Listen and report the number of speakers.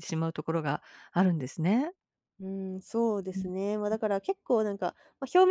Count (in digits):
2